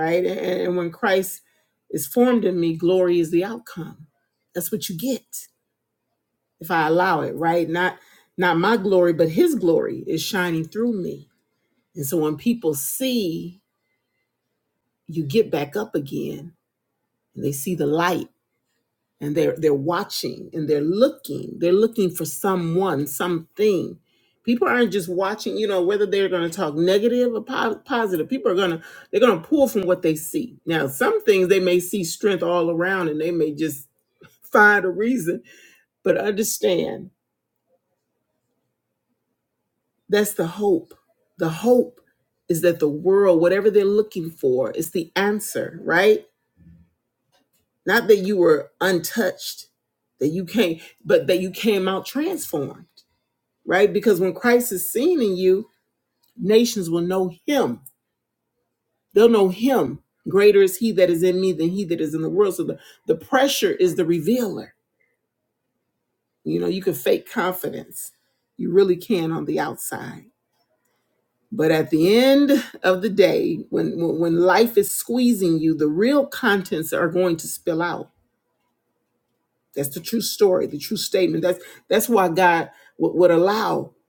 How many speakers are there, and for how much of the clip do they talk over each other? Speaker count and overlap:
1, no overlap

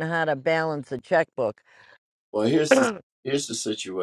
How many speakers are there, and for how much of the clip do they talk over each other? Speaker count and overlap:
2, no overlap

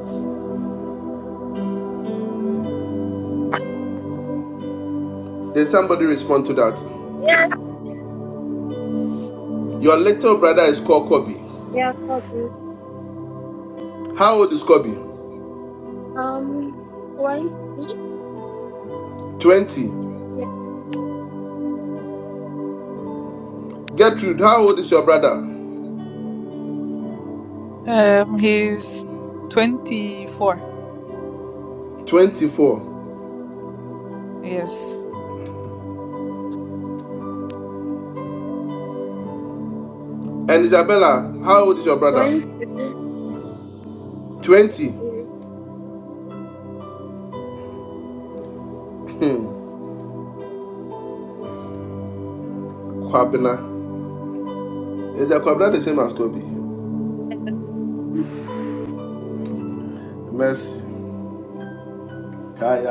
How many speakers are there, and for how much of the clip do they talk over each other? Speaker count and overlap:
3, under 1%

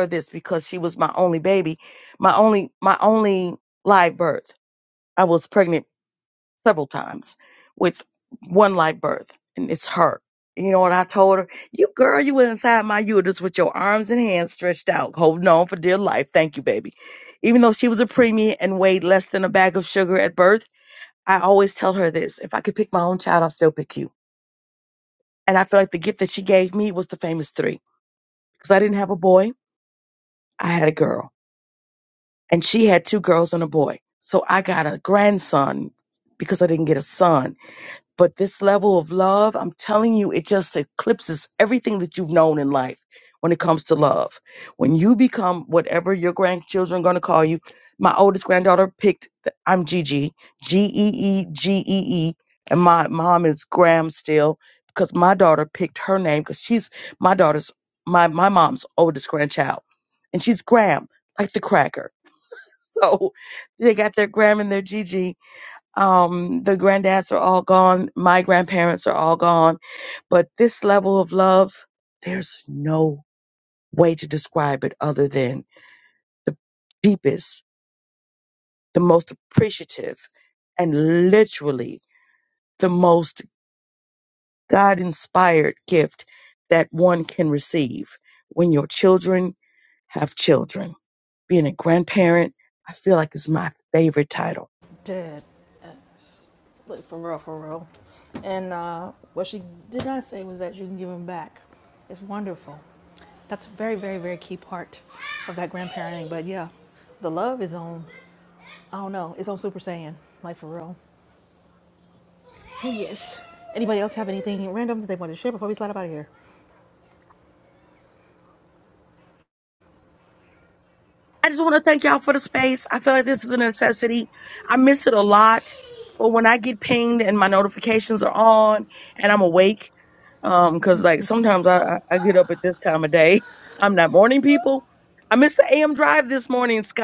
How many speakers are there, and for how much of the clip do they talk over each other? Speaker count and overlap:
2, no overlap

